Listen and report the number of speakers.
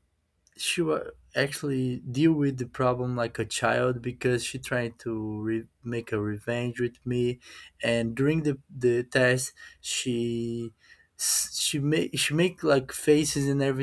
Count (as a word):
one